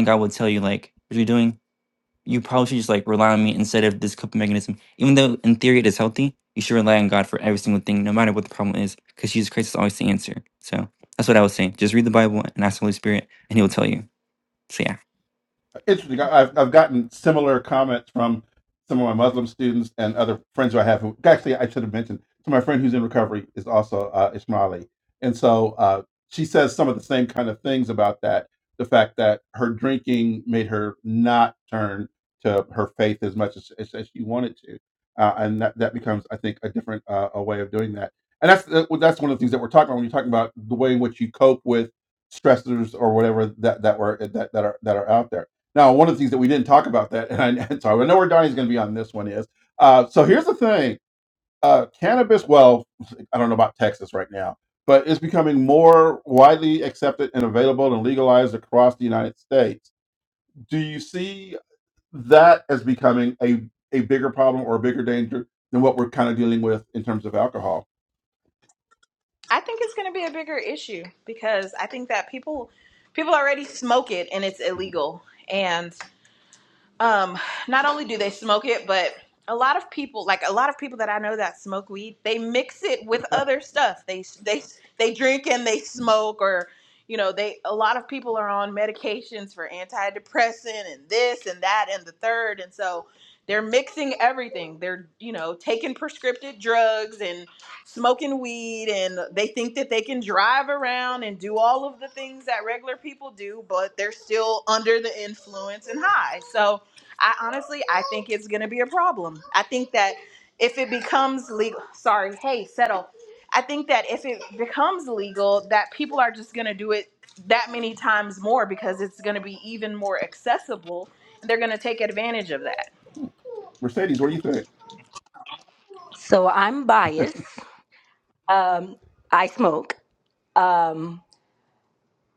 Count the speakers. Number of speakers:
4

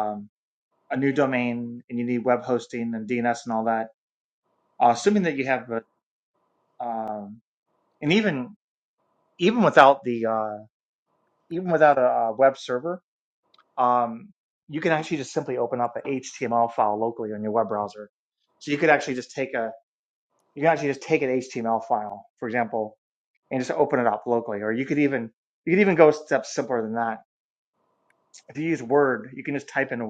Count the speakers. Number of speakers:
1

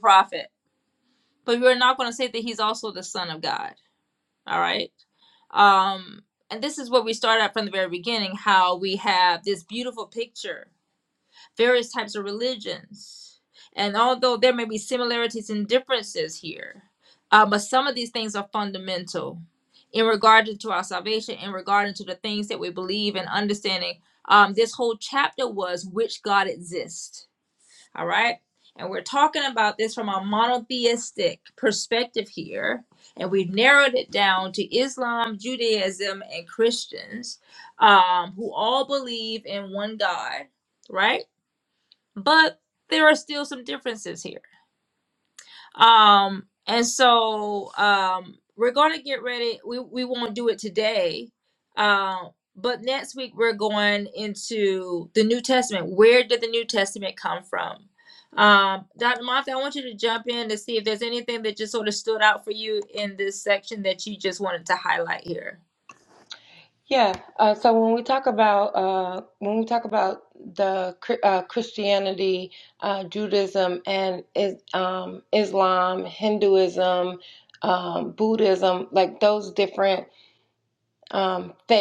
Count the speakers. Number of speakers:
2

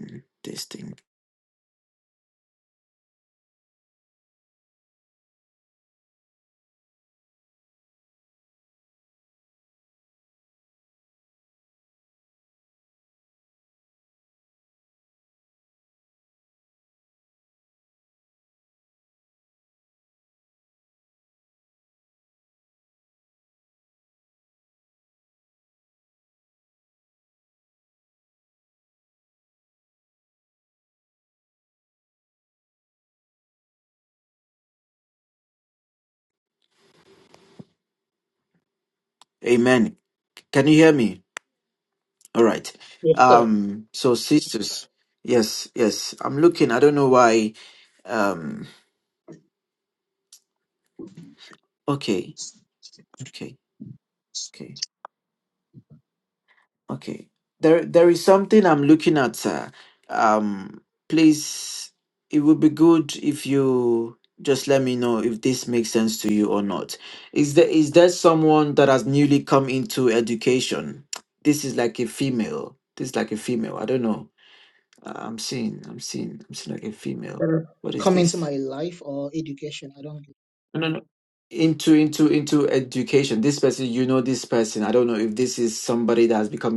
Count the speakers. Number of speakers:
2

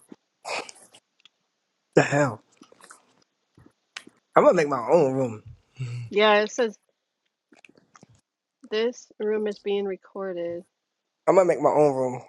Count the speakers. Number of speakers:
2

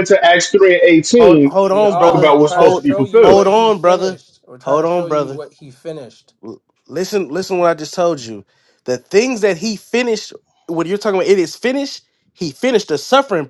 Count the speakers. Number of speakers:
3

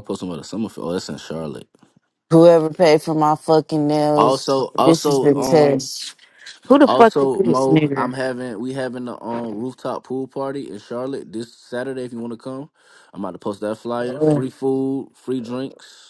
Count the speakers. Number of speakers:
2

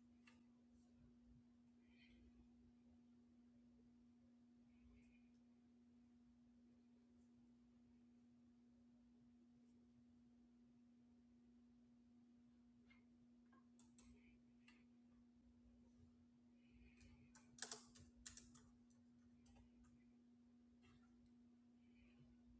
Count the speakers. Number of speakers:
0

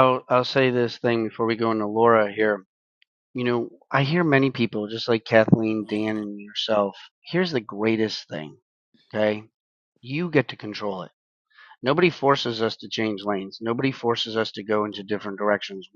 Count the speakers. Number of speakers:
1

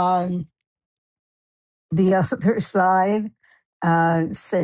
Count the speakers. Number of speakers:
1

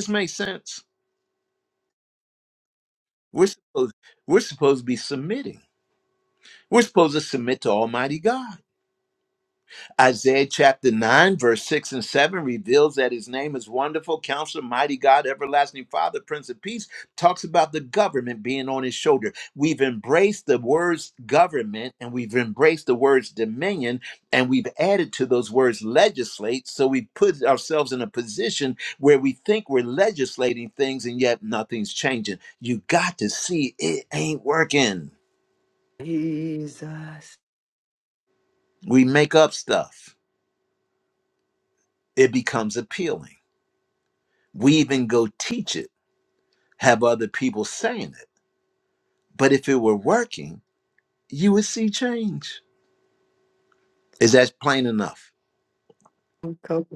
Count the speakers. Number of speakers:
2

